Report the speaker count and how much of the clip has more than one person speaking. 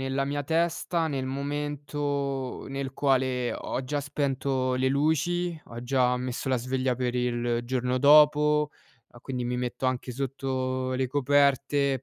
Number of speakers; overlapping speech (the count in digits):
1, no overlap